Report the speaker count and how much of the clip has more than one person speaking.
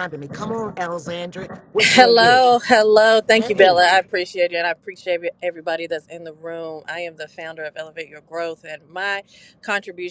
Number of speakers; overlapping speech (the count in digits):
2, about 11%